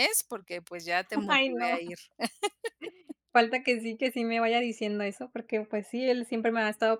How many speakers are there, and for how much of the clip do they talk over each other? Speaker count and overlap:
2, about 7%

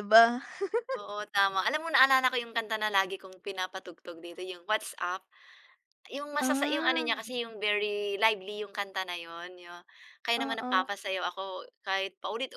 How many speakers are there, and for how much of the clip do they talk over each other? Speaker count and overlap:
2, about 10%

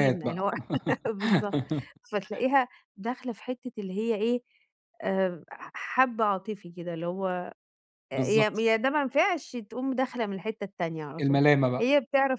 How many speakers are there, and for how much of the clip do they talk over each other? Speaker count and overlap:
2, about 8%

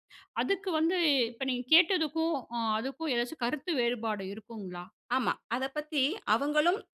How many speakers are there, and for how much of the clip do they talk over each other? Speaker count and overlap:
2, no overlap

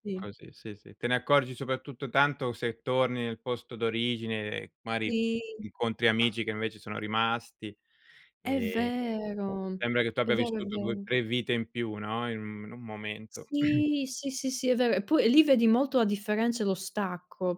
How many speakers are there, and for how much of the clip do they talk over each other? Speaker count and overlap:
2, about 10%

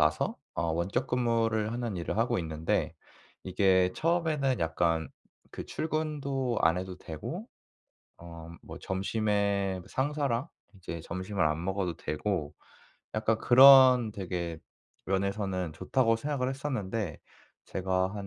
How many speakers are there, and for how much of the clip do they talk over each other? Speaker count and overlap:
1, no overlap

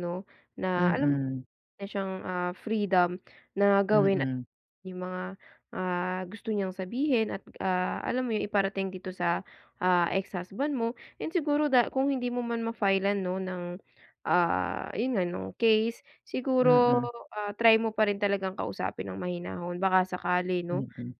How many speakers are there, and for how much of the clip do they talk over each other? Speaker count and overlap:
2, about 6%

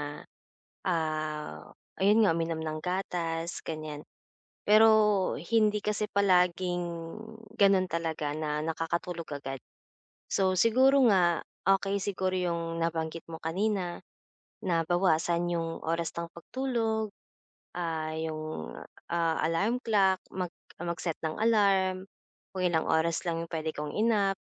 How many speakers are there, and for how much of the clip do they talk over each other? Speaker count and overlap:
1, no overlap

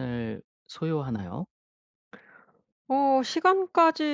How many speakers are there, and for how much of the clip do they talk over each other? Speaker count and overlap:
2, no overlap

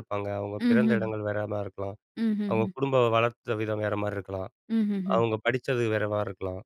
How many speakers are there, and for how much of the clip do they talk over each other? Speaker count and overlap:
2, about 10%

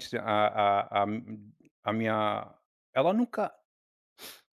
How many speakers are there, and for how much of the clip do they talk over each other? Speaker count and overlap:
1, no overlap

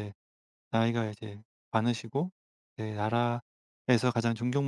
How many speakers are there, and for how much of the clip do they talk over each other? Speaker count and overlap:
1, no overlap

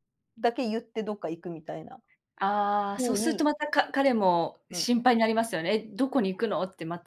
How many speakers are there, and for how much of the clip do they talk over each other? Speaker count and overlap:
2, about 8%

